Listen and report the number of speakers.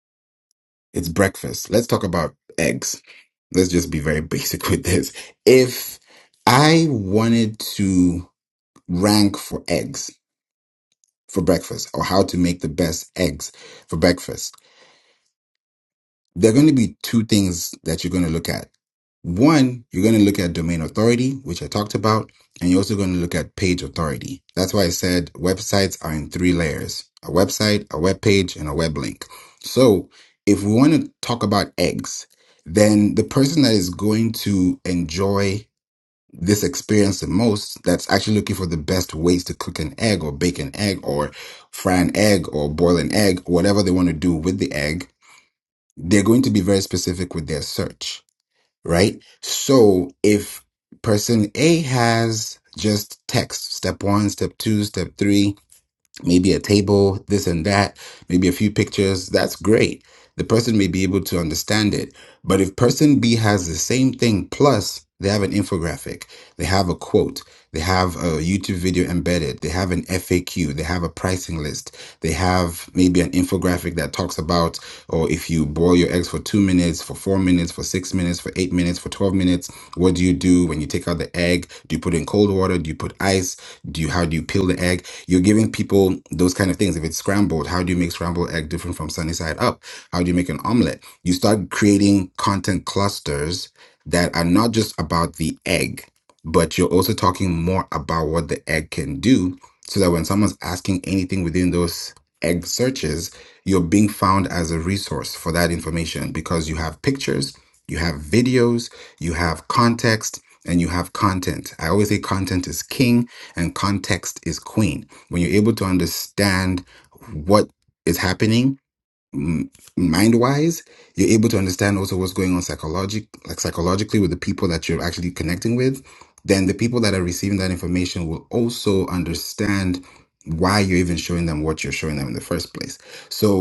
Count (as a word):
one